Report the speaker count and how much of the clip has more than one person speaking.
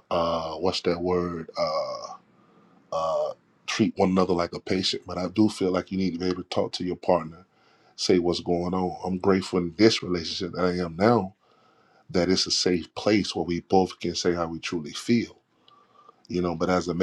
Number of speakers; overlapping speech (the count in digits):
1, no overlap